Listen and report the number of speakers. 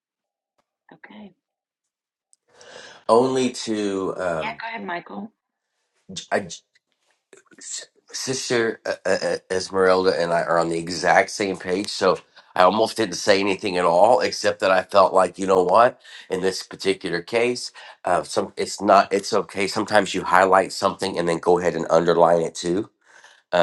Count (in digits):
2